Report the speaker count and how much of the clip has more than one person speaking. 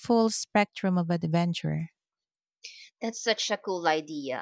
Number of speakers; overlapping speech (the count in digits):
2, no overlap